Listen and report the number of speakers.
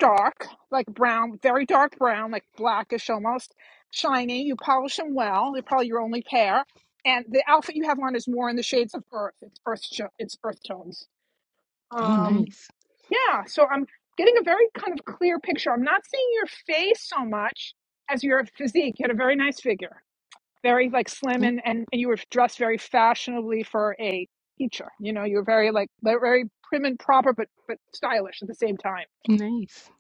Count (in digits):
2